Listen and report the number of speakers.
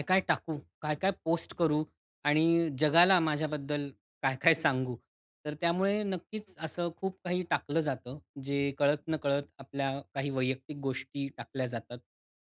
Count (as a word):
one